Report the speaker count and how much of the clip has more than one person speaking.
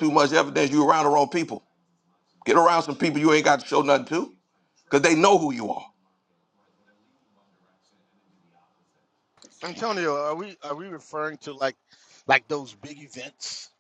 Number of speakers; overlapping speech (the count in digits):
2, no overlap